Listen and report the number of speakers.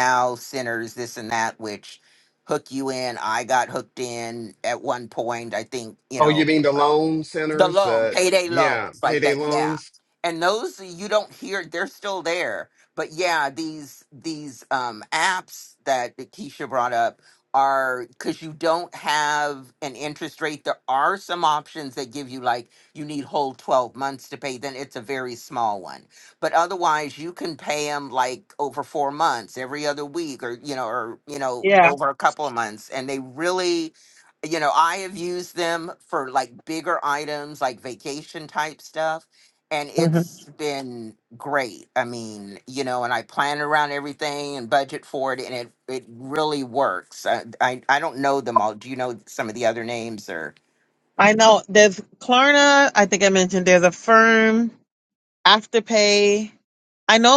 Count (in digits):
3